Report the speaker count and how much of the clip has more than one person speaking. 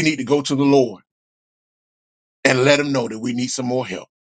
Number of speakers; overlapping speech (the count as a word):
one, no overlap